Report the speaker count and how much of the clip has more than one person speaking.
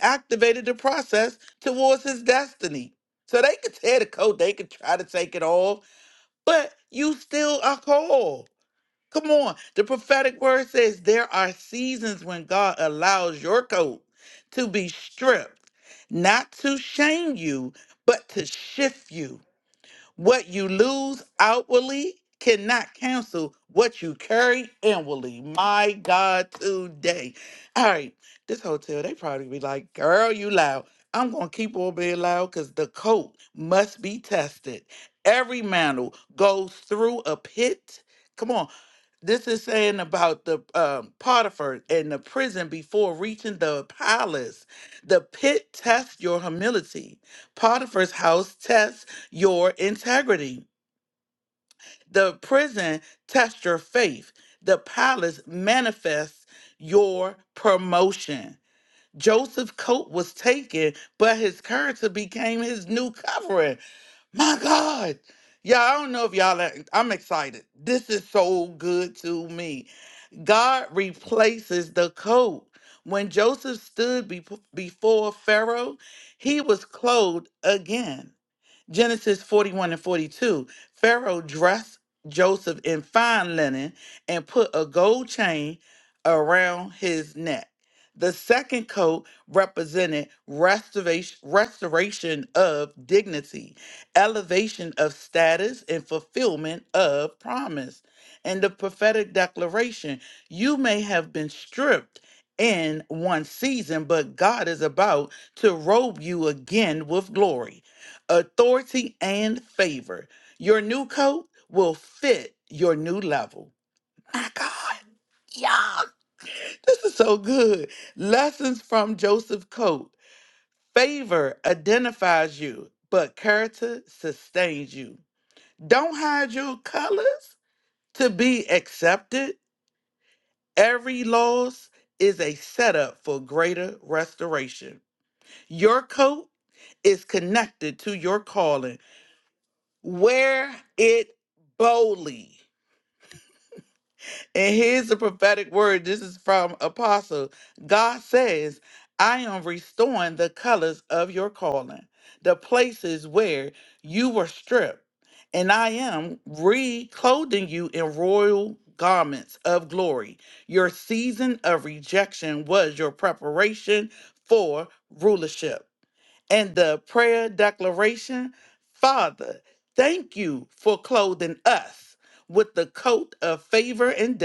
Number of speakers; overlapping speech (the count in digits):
1, no overlap